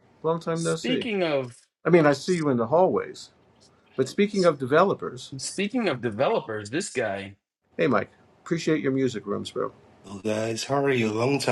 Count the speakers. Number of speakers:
3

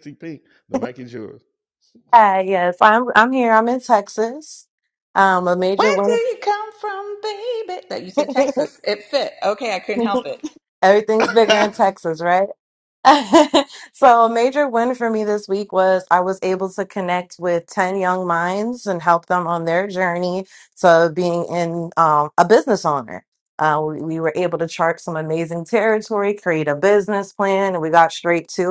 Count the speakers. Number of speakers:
3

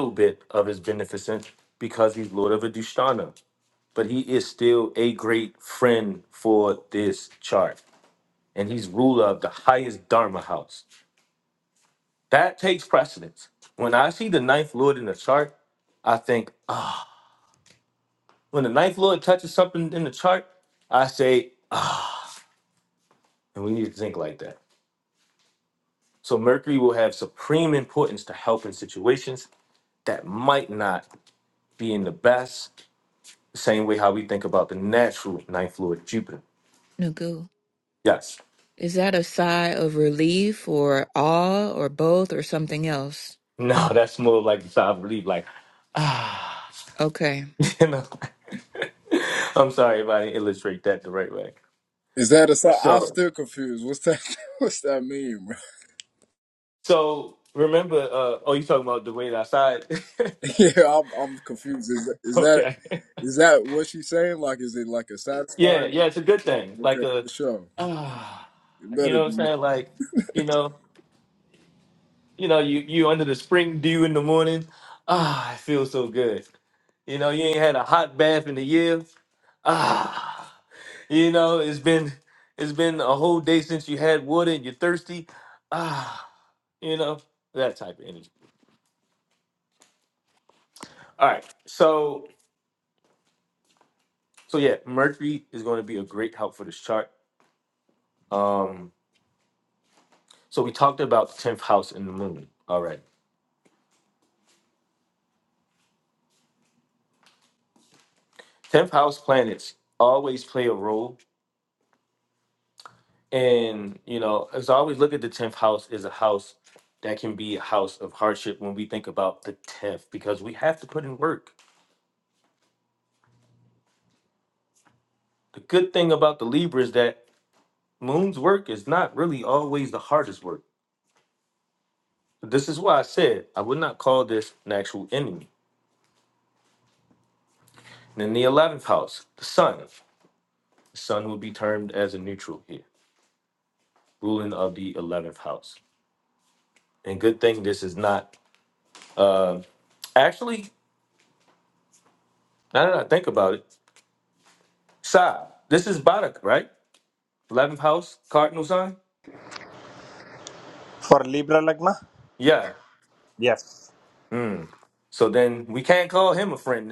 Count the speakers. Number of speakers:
4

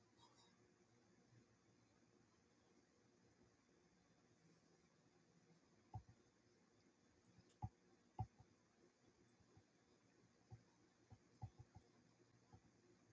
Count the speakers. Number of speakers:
0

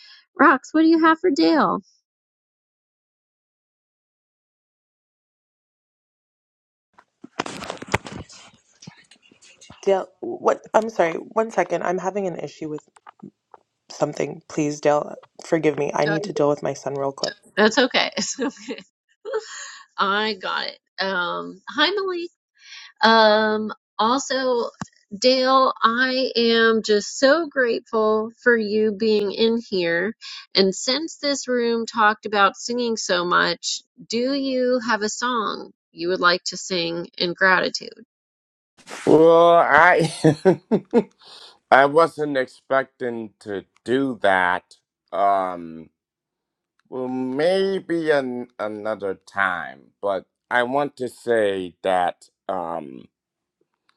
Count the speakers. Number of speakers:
3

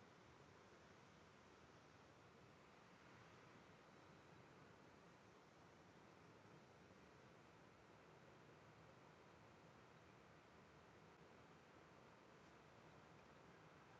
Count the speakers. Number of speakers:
0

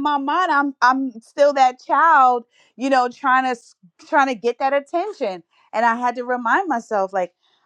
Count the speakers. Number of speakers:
1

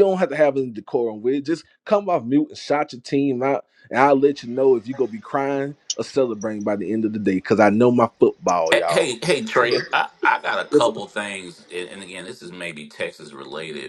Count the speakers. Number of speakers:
2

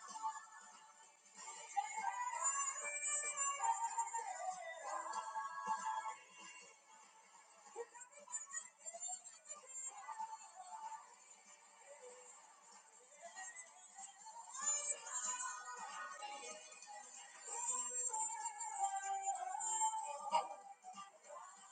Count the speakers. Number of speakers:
0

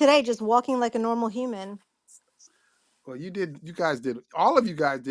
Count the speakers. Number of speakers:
2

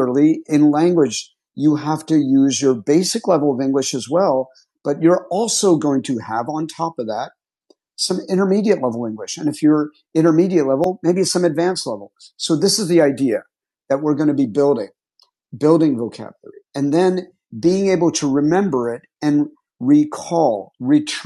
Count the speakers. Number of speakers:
1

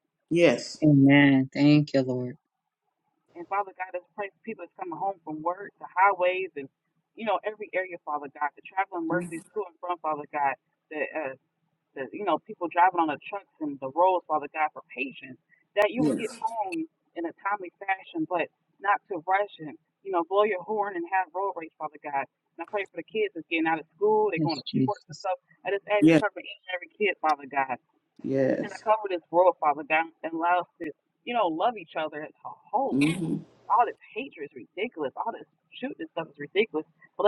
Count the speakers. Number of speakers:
3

